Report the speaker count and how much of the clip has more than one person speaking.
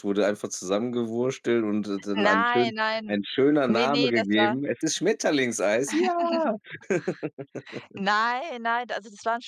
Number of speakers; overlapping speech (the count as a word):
two, about 16%